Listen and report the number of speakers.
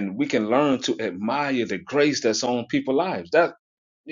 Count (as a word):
one